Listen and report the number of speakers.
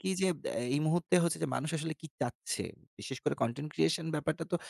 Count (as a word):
one